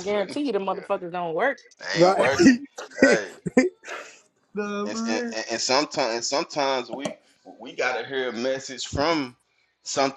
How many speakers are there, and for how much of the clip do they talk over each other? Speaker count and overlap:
three, about 20%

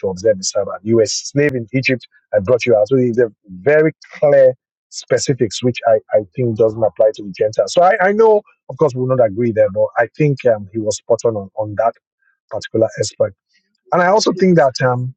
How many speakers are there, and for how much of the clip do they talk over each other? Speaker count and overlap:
one, no overlap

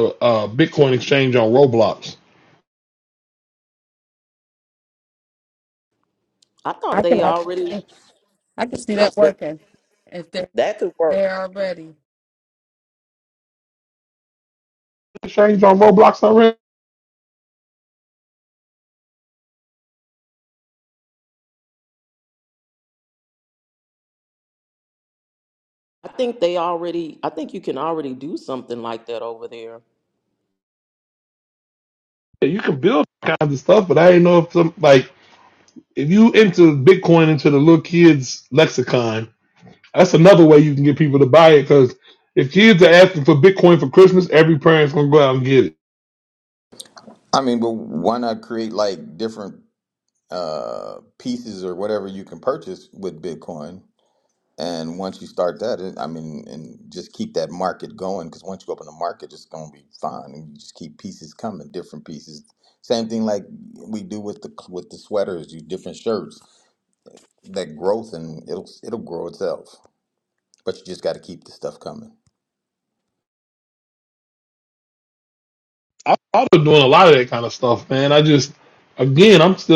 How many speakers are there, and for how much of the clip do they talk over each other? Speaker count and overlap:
four, about 1%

